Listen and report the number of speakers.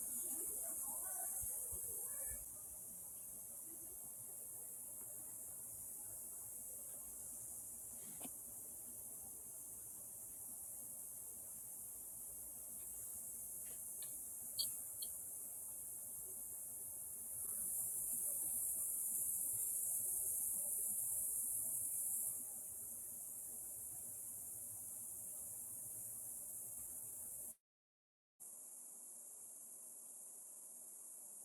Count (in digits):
0